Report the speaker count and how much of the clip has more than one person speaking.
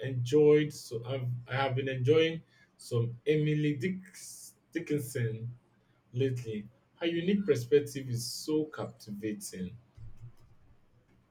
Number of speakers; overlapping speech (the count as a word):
one, no overlap